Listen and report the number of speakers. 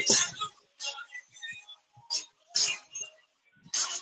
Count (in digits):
0